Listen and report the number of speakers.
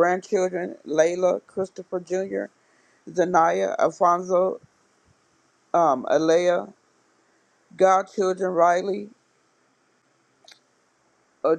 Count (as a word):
one